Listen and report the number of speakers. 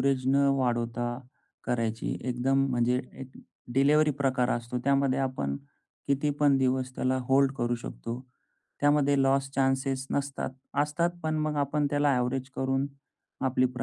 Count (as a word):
one